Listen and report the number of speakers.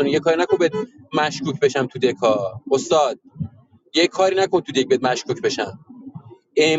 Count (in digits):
1